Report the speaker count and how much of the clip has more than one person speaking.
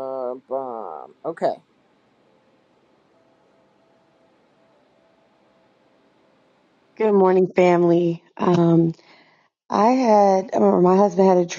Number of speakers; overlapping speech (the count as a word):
two, no overlap